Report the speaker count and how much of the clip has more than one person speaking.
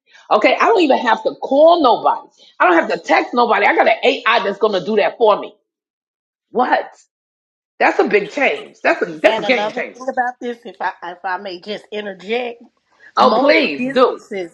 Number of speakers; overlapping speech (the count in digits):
2, about 12%